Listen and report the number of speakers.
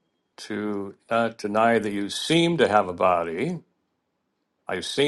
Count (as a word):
one